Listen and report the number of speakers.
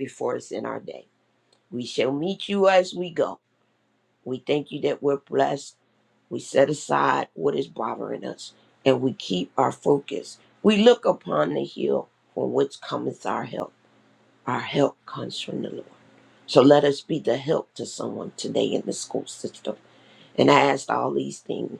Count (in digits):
1